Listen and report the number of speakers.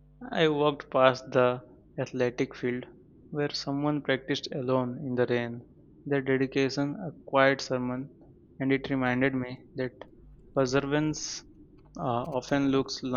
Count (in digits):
1